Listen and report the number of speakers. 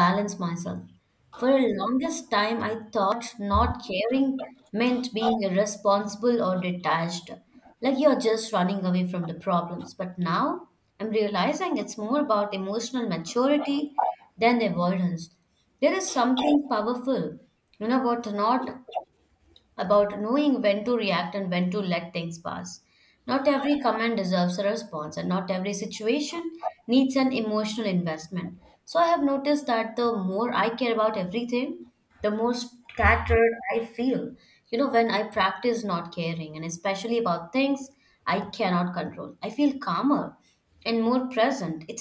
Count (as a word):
one